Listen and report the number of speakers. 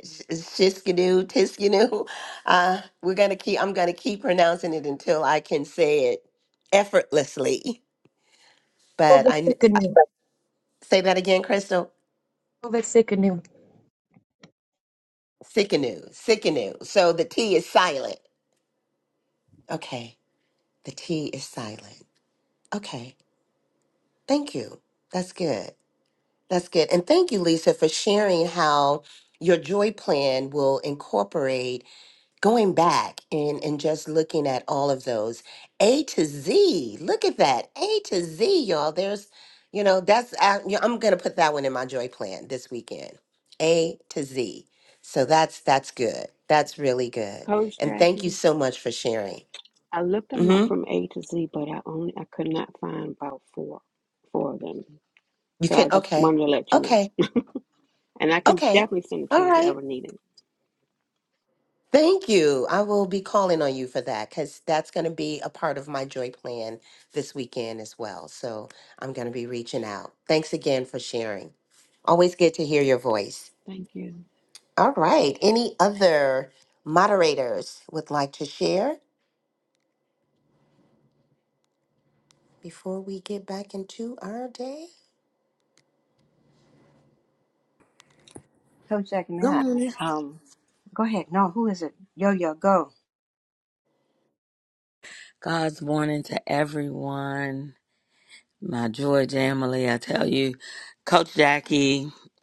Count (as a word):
five